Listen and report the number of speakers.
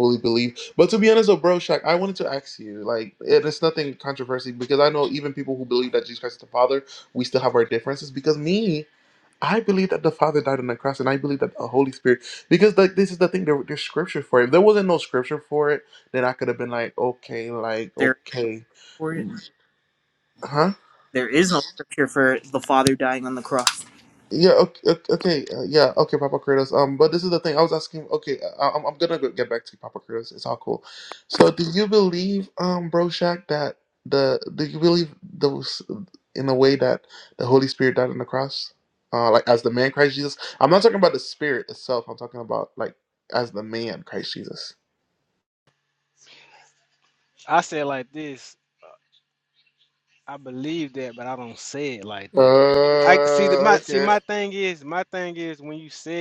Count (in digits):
3